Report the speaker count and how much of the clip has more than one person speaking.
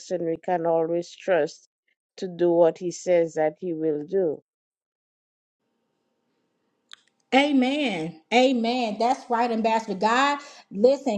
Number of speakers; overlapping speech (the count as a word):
two, no overlap